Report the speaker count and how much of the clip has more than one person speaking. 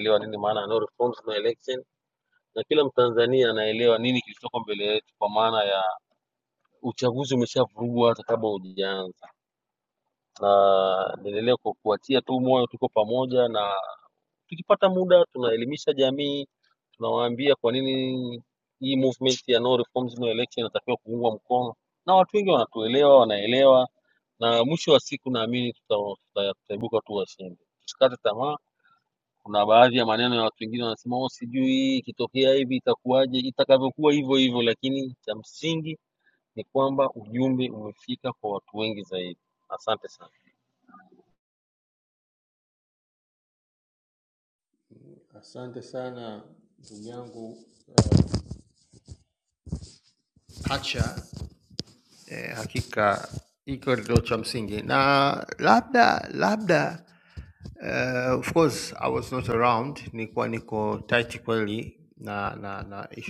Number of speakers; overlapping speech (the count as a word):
two, no overlap